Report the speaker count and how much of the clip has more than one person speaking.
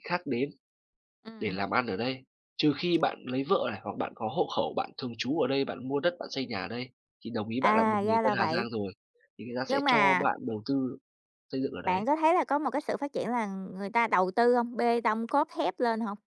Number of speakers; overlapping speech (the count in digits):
2, about 12%